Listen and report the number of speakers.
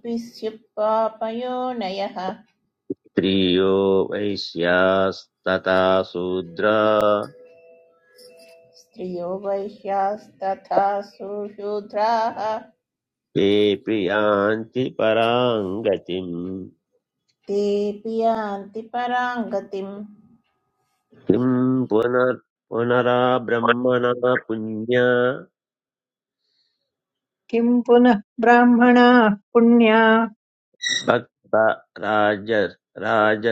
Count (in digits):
3